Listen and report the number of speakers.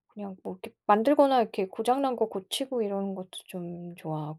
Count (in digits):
1